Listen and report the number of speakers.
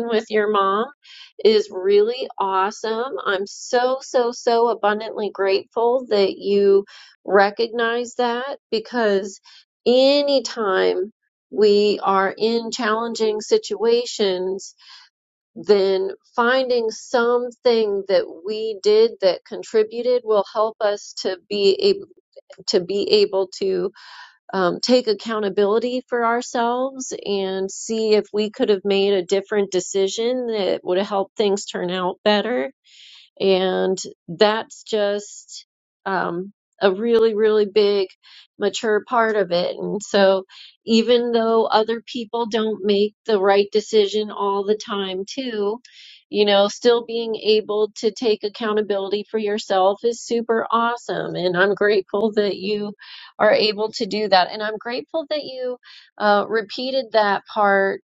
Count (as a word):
one